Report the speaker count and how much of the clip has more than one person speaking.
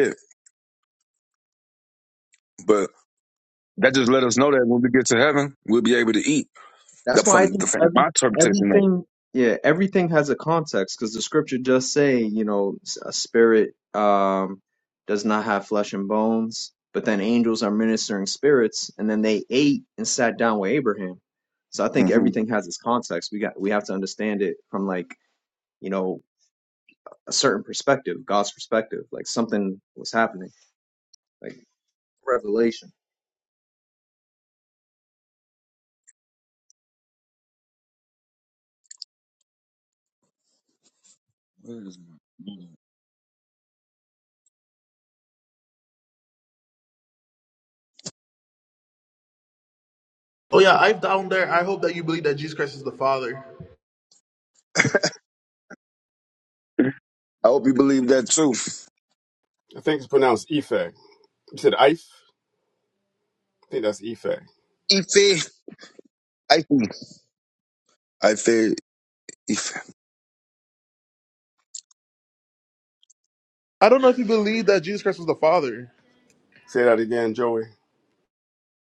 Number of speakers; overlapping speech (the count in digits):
4, about 2%